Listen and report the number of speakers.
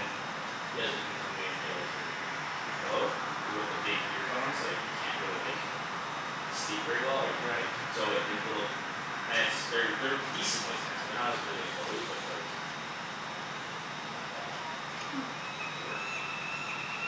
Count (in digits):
1